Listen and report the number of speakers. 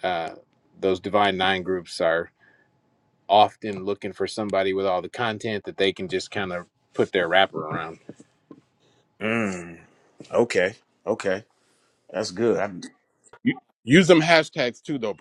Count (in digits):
3